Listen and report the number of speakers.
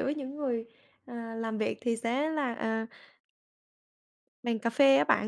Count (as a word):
one